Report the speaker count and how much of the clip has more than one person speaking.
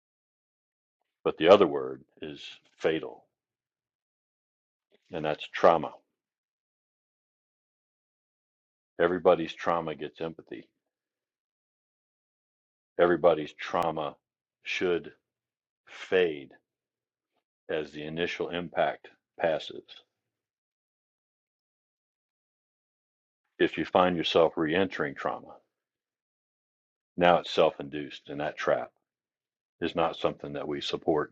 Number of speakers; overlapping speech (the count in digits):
1, no overlap